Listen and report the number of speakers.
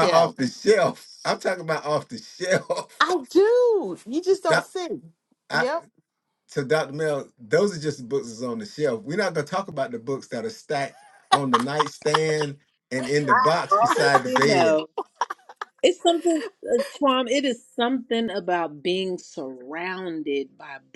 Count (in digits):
3